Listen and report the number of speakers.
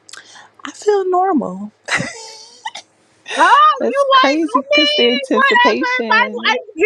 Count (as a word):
two